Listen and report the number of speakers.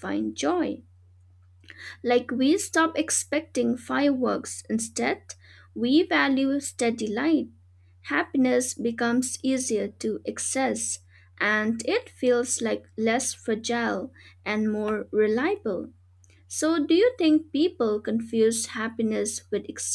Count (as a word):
one